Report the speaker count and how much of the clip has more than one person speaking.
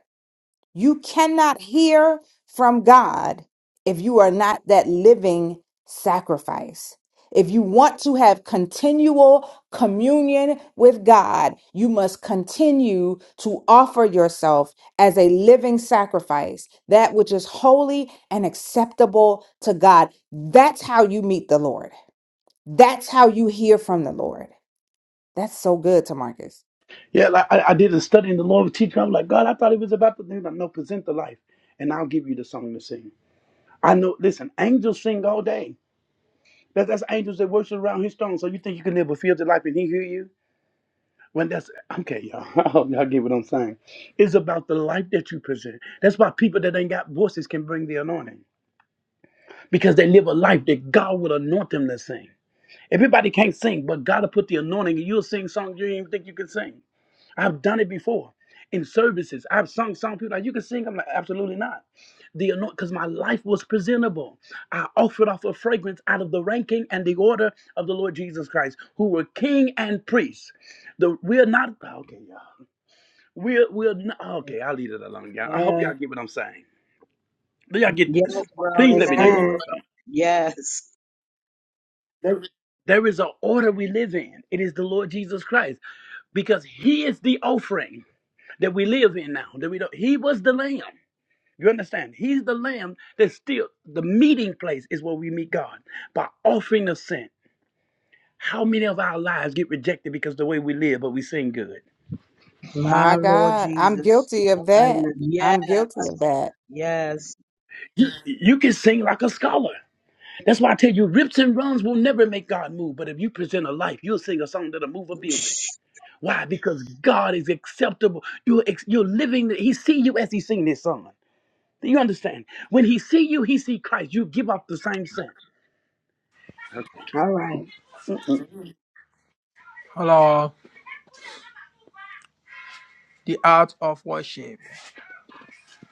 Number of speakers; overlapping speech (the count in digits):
5, about 3%